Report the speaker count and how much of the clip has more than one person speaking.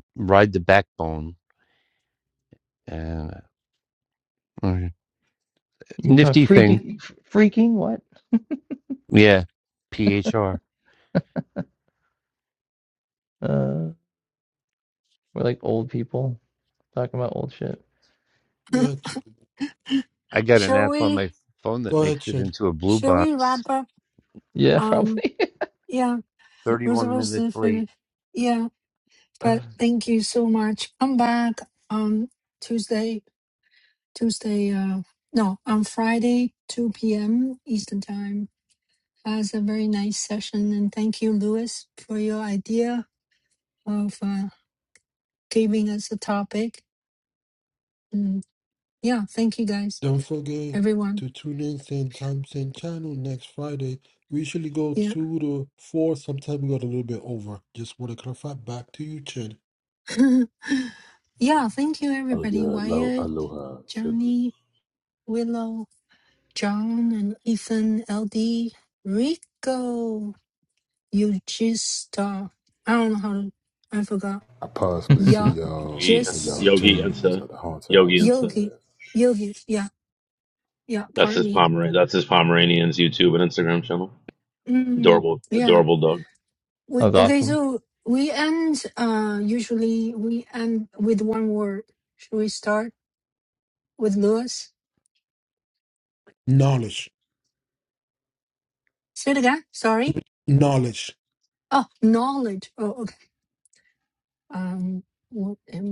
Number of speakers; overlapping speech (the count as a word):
six, about 9%